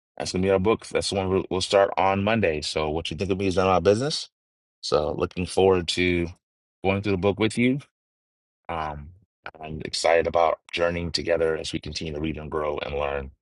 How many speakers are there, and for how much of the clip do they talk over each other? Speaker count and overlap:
one, no overlap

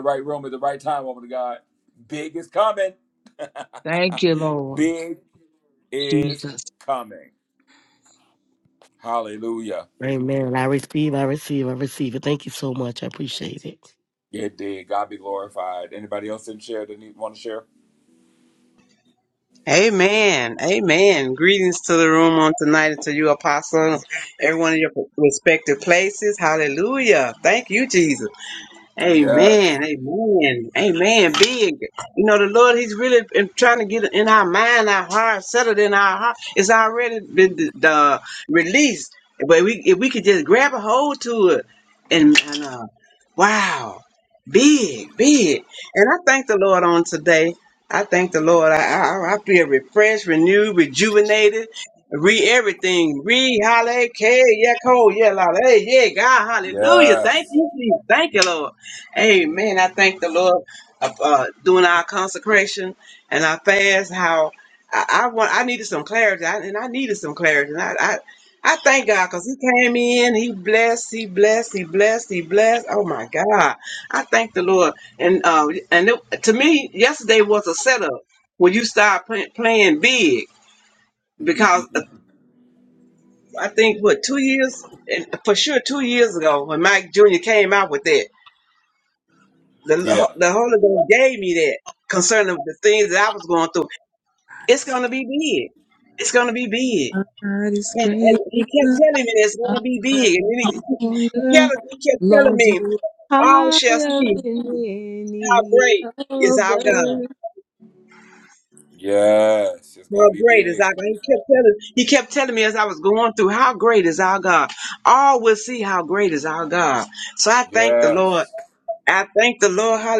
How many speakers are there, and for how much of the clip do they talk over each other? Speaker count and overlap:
five, about 5%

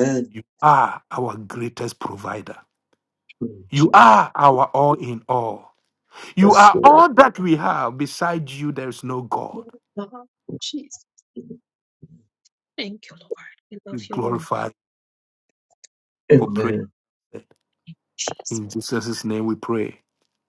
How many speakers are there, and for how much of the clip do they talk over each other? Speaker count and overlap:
three, about 7%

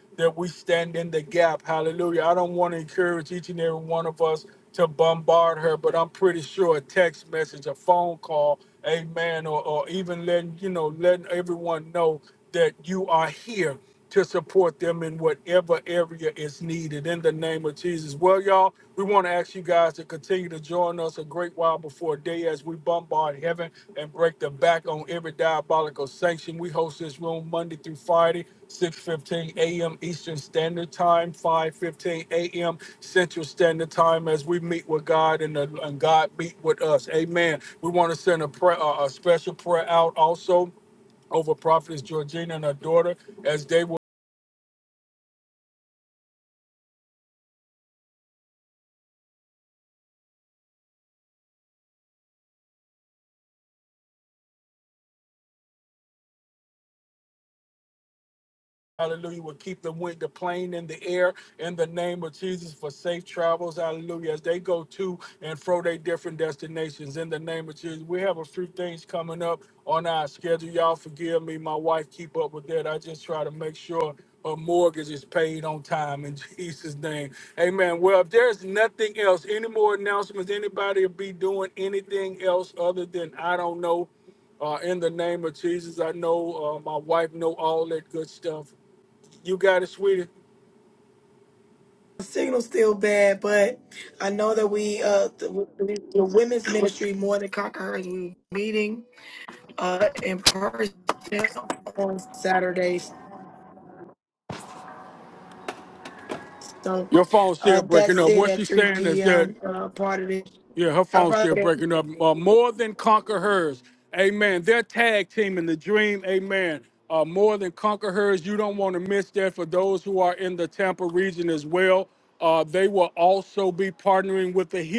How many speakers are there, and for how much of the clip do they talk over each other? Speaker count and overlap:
two, about 2%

